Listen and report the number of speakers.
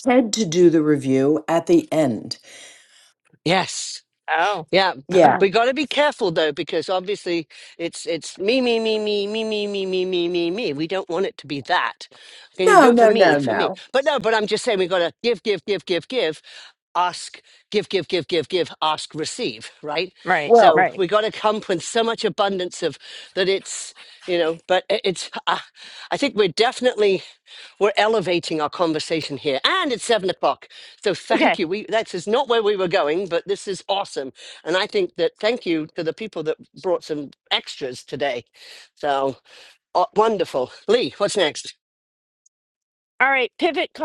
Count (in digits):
3